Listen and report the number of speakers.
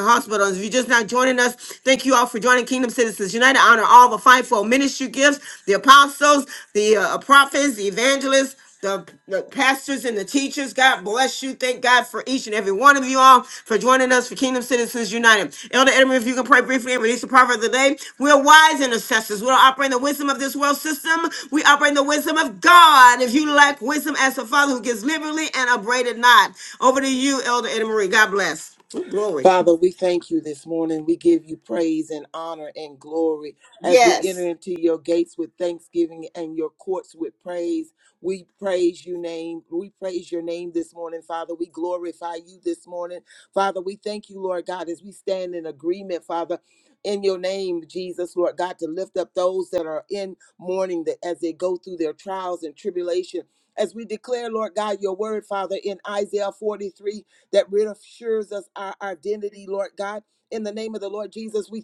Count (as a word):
two